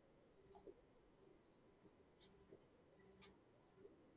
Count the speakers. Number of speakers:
zero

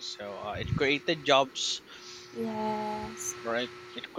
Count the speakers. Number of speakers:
two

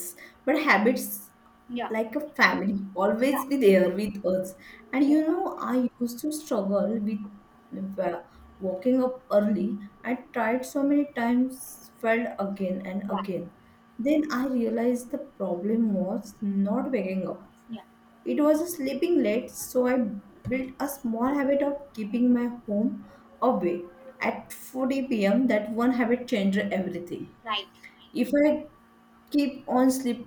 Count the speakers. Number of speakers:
two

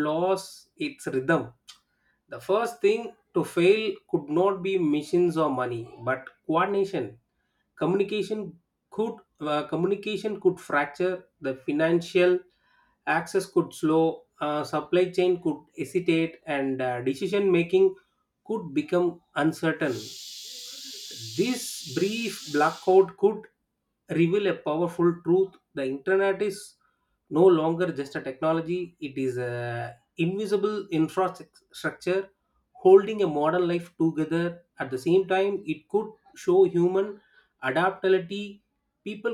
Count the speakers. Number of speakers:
one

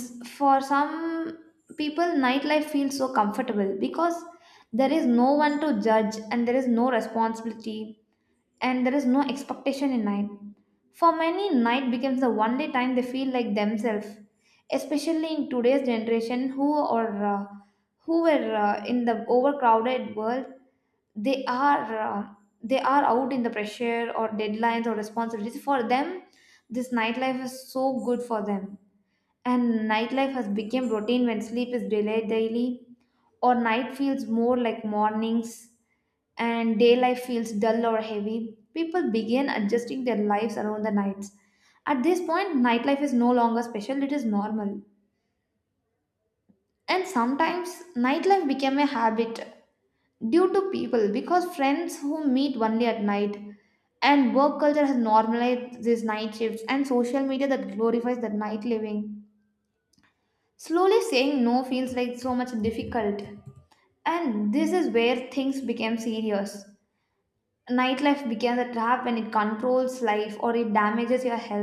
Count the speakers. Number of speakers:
one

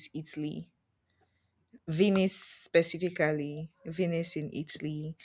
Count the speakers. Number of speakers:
one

